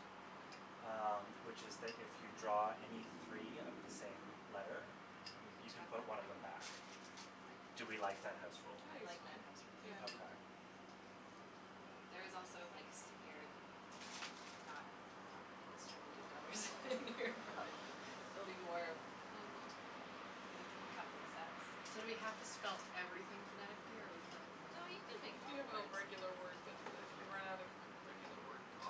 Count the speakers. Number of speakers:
four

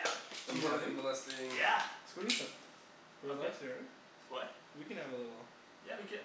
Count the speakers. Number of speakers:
three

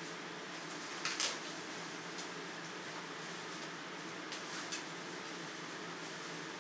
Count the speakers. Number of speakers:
zero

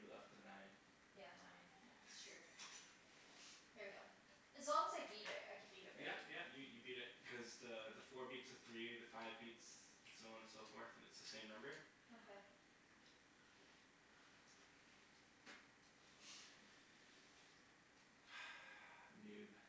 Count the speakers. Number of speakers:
two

